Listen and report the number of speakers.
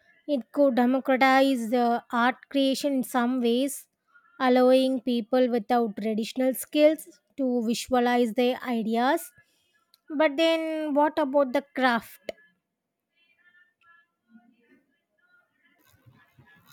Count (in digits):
1